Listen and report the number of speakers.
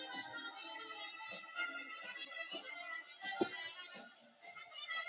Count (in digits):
0